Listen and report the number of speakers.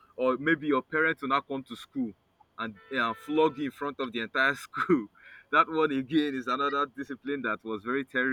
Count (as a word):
one